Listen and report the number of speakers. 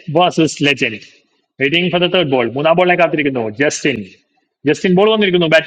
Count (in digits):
1